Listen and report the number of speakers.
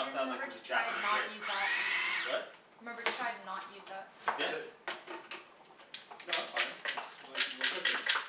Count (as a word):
three